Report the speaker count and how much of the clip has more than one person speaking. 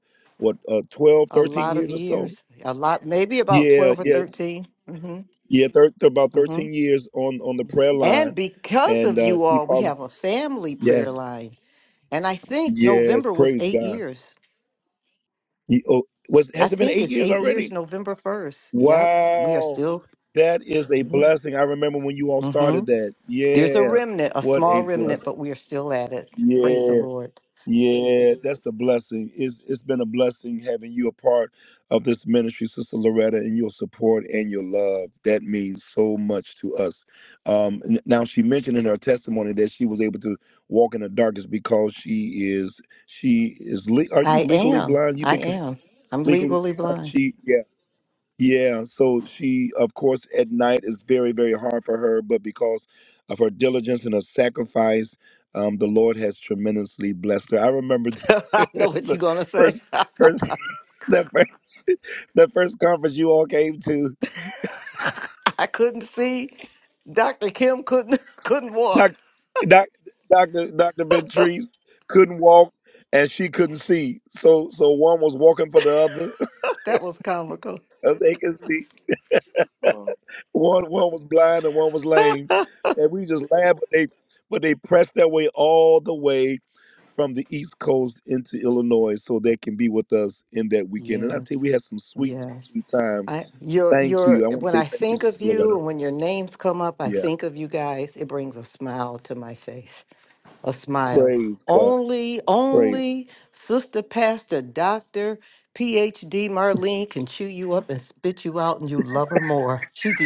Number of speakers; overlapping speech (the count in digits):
2, about 14%